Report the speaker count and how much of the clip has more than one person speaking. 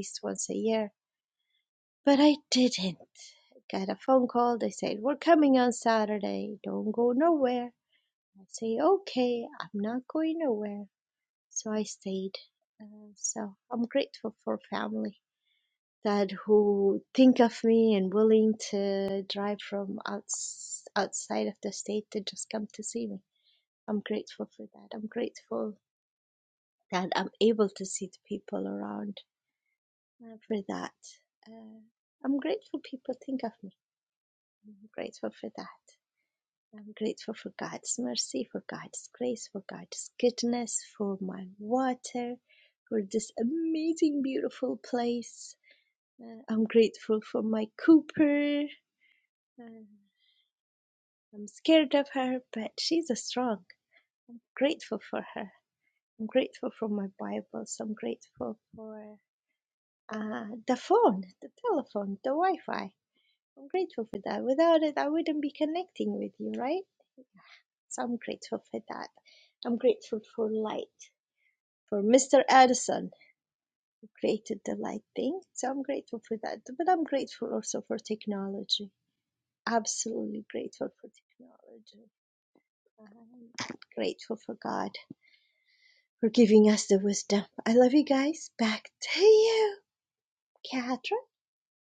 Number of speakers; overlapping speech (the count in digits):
1, no overlap